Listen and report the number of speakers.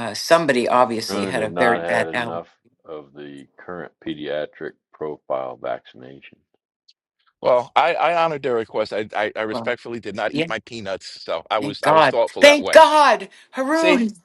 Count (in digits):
3